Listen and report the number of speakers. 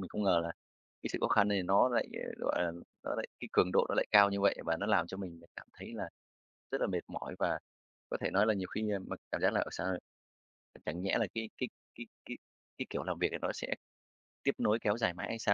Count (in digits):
1